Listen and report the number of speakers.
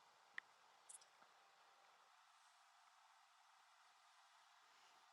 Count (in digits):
0